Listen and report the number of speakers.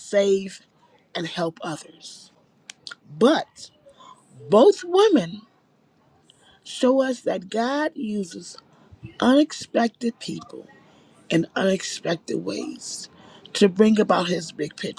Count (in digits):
1